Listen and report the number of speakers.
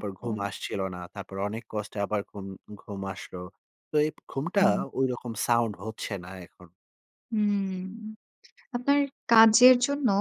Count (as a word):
two